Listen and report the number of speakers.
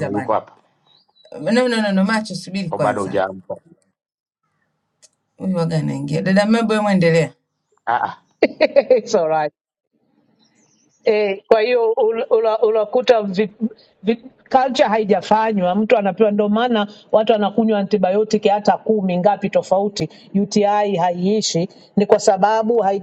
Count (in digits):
3